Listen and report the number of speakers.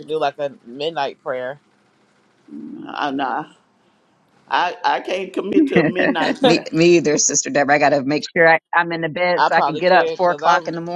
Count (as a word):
three